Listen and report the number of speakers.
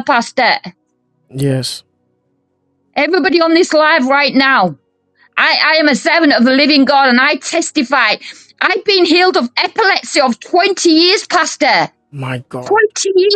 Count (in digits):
2